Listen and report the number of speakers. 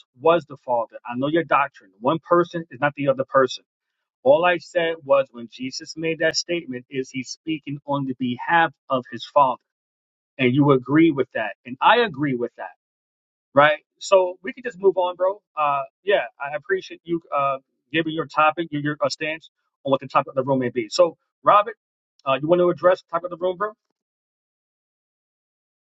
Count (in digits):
1